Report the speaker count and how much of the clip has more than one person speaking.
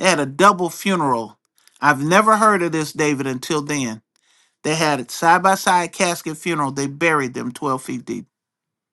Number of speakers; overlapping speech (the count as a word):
one, no overlap